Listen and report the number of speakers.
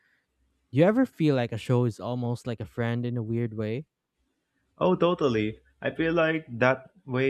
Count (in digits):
2